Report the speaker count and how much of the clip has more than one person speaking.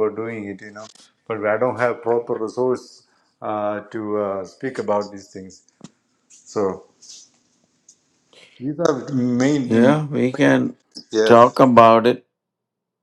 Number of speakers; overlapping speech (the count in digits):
2, about 4%